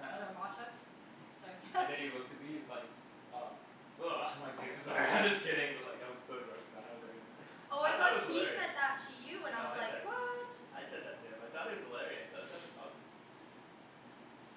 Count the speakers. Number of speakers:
2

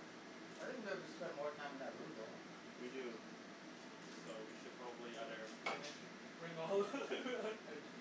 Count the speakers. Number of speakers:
3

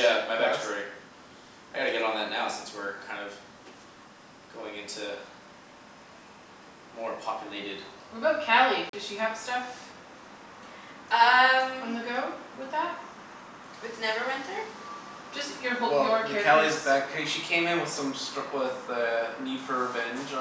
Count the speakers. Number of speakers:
4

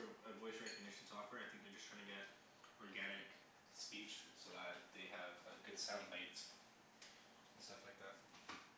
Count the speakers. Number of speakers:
1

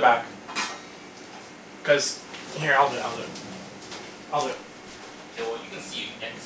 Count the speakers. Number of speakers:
2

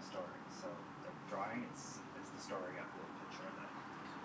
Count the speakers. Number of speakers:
1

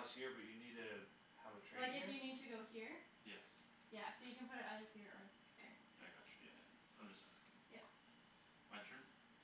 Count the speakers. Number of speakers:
3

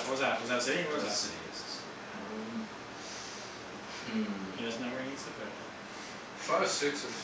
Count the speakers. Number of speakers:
2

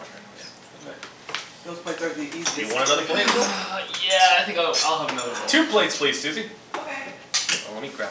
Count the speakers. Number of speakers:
3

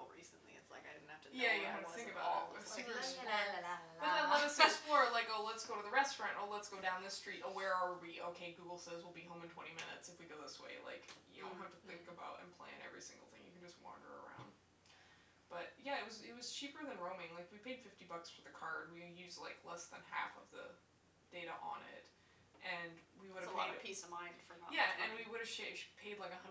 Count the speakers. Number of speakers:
2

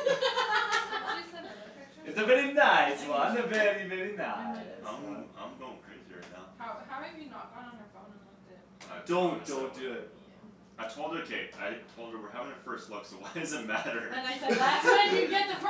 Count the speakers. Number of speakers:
4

